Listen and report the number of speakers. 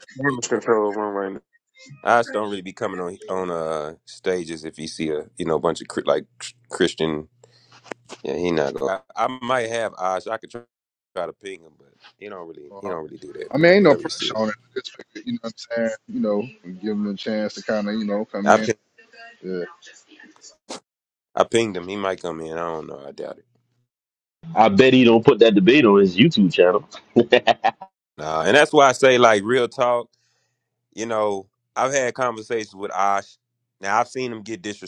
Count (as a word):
four